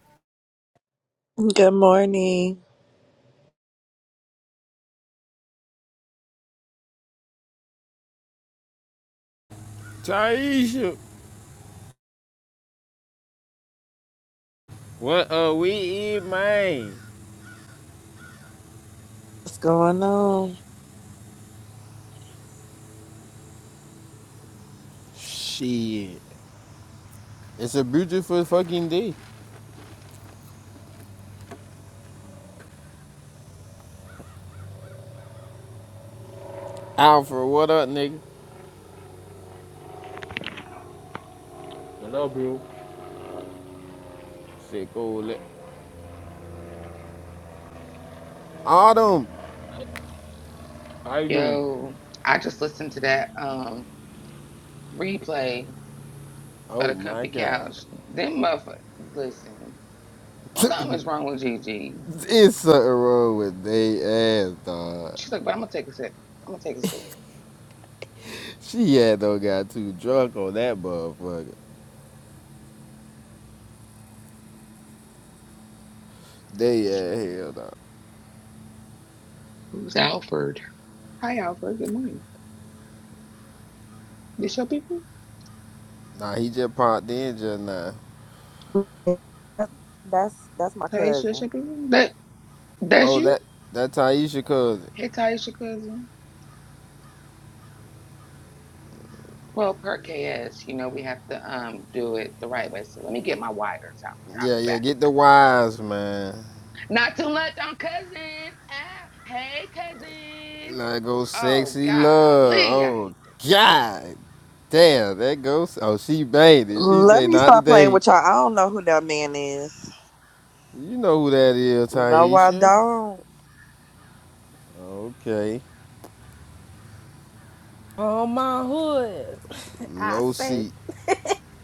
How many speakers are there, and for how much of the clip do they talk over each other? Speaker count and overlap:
five, about 5%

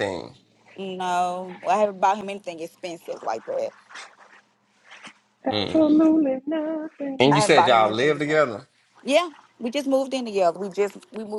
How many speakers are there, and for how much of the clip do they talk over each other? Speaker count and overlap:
three, about 13%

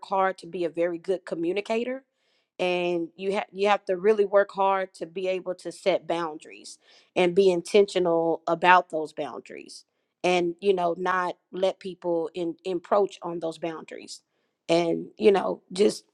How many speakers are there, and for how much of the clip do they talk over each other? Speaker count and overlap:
one, no overlap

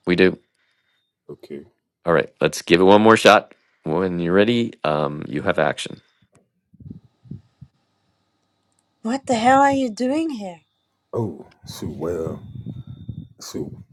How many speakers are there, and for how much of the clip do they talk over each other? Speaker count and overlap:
three, no overlap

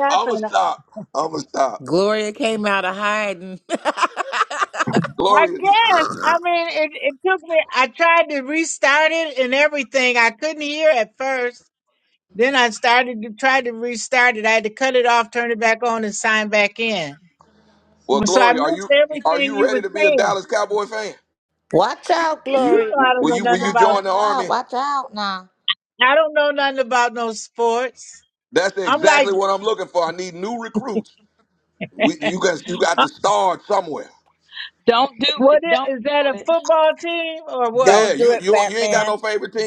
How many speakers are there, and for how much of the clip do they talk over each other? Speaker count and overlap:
five, about 20%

